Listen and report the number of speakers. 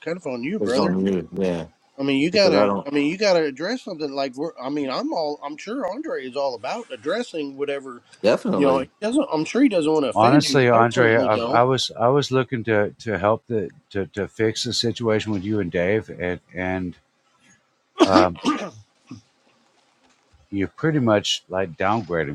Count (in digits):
3